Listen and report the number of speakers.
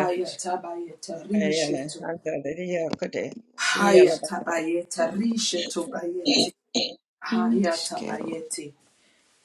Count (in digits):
3